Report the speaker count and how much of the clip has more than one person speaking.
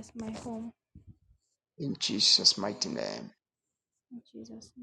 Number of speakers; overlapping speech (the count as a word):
two, no overlap